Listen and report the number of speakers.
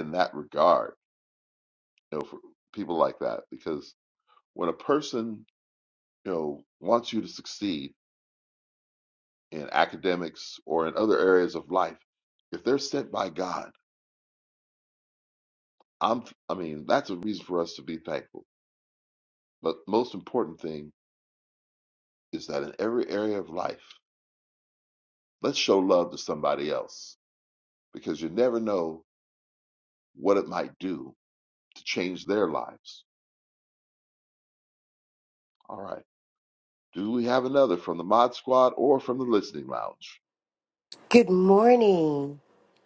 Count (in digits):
2